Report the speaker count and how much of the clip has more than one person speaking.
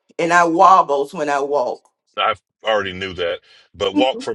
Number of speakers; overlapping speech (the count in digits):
2, no overlap